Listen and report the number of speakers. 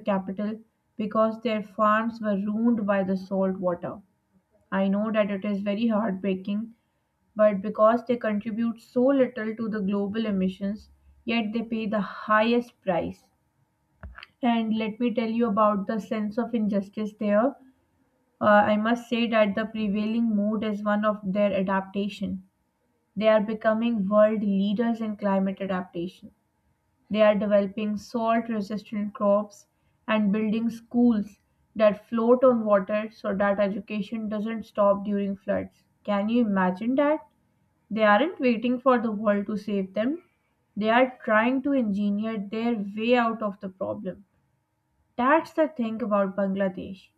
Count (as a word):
one